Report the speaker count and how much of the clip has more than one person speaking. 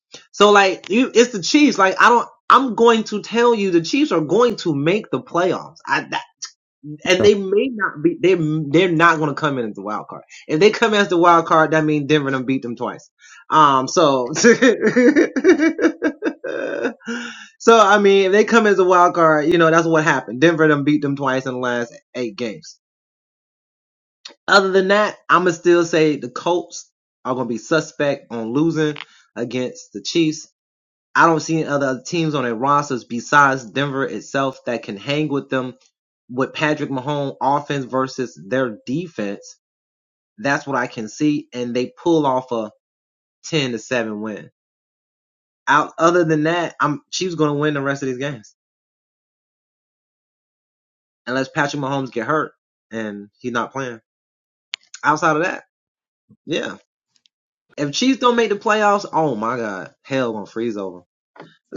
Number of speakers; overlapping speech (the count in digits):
1, no overlap